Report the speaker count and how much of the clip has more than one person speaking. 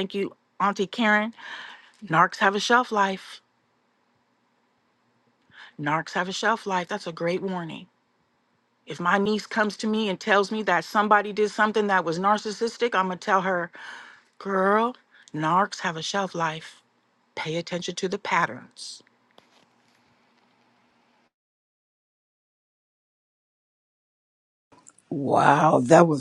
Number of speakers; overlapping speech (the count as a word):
two, no overlap